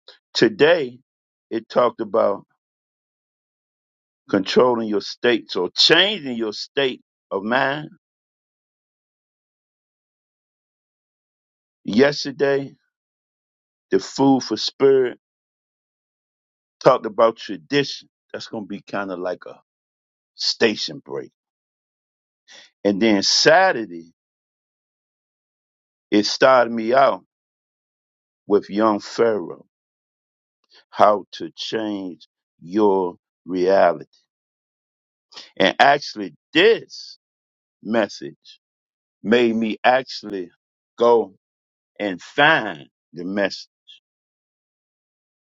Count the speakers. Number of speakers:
1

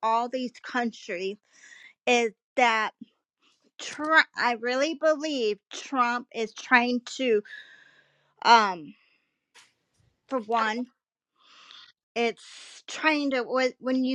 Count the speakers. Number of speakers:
1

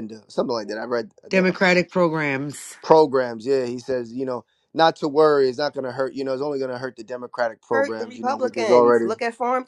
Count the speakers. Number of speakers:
3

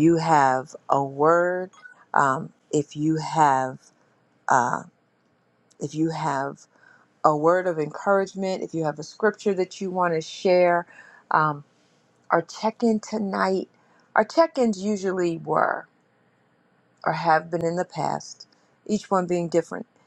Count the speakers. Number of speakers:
1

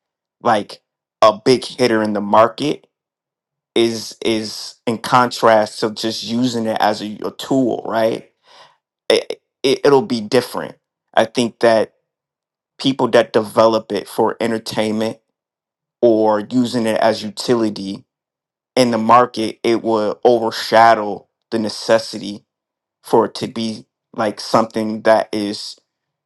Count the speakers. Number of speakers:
1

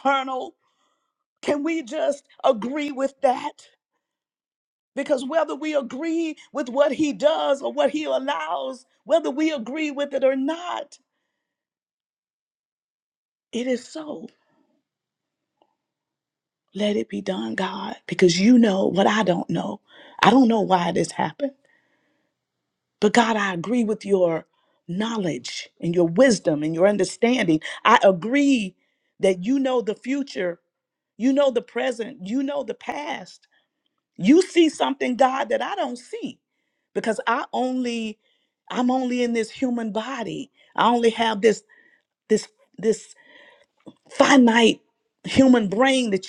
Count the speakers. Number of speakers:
1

